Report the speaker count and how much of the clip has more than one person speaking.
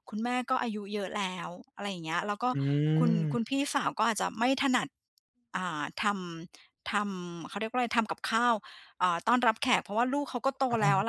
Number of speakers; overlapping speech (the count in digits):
2, about 5%